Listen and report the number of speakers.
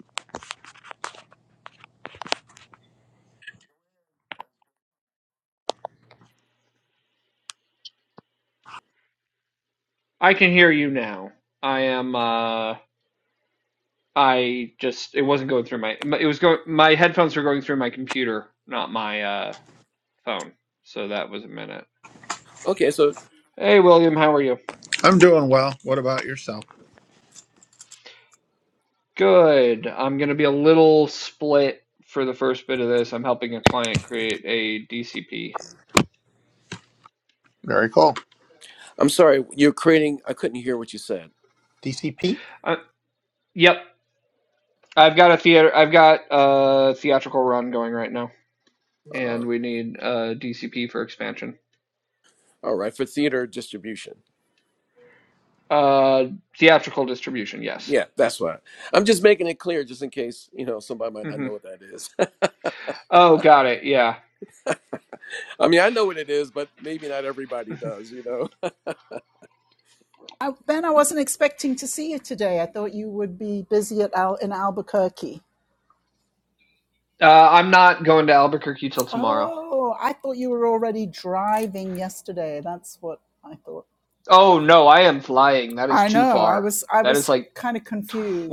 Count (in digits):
4